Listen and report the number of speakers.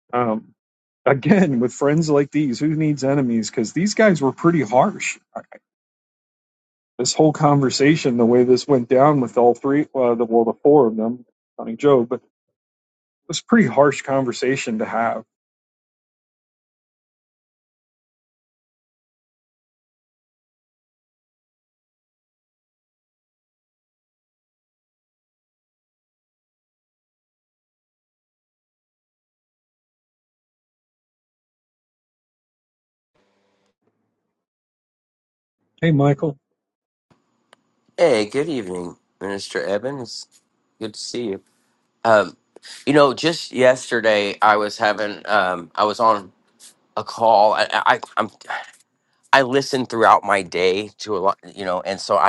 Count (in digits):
2